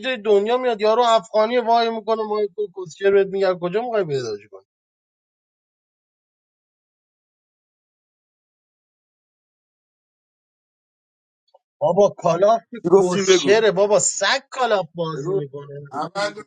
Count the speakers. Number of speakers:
2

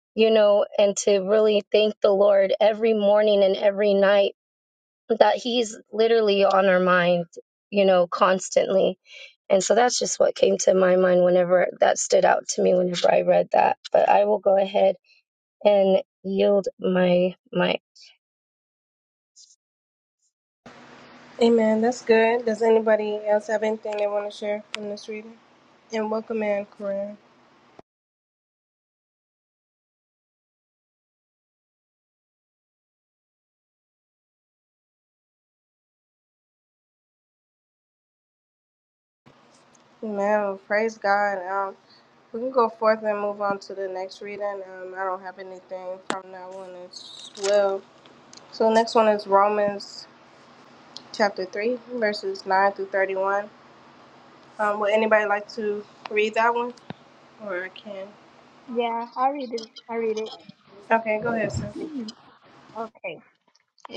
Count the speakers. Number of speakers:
3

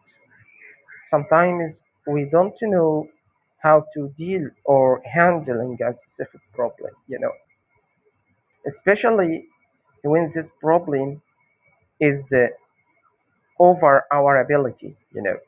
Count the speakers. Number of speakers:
1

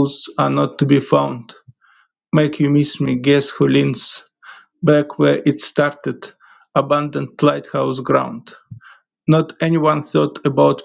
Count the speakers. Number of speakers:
1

